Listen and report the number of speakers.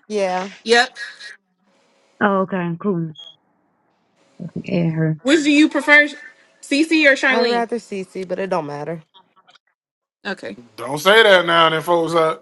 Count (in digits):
4